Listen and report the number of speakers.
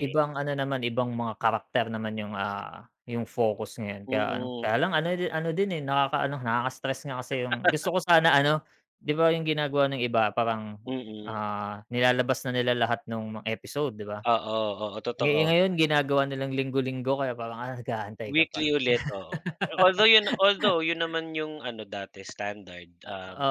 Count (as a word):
two